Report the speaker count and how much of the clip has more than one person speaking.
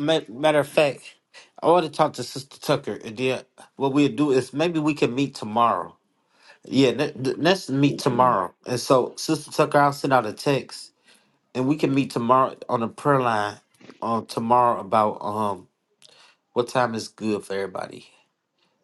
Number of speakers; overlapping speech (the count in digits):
1, no overlap